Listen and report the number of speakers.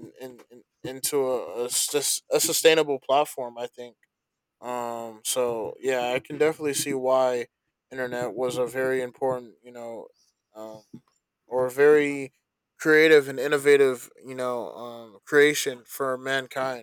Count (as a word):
one